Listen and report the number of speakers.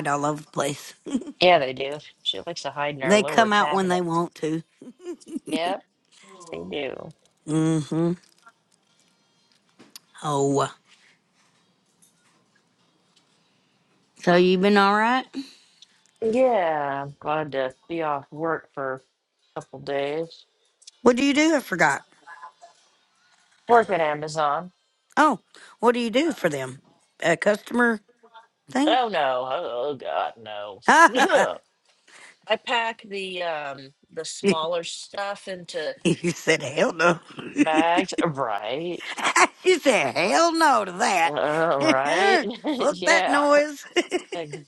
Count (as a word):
two